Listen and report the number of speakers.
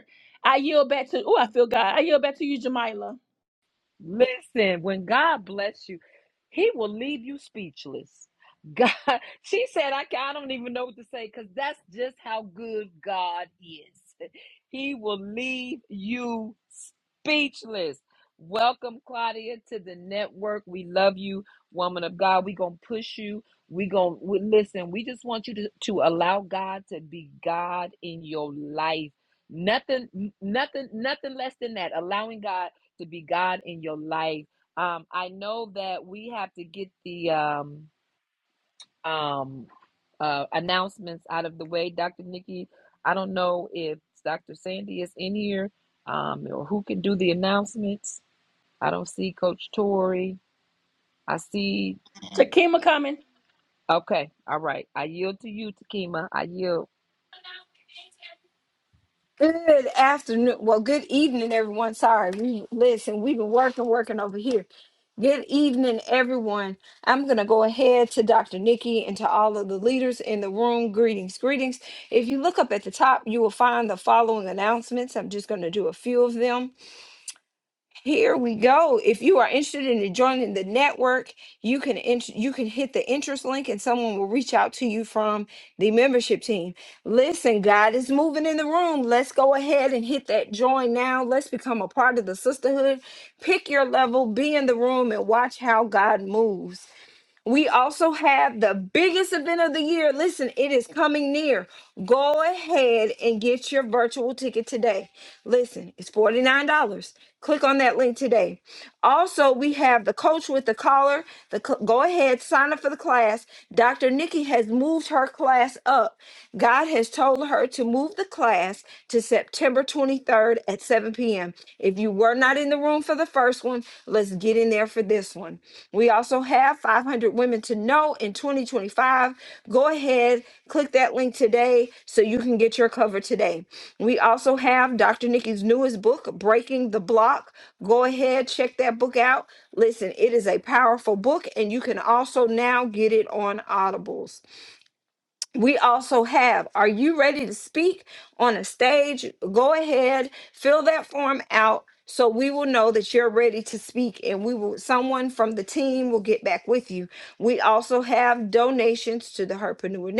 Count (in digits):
3